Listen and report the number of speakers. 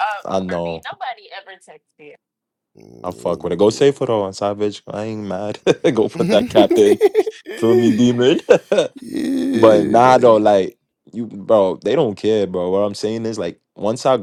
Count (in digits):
3